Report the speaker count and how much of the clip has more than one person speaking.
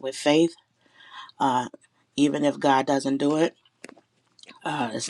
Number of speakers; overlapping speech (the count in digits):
1, no overlap